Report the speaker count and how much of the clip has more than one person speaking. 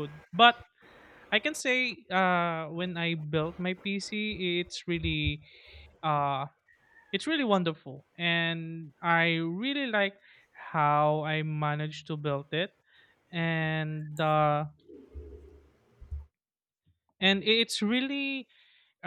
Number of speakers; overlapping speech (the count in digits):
1, no overlap